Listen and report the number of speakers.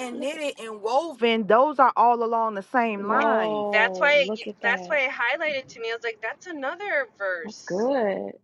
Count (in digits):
3